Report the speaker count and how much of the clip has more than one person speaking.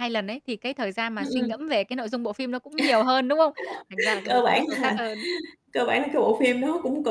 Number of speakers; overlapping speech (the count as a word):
two, about 17%